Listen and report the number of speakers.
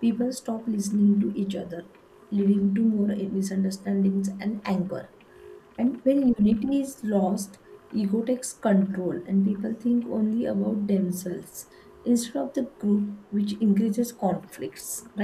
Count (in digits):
1